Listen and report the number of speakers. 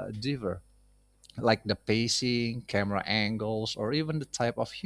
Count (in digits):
1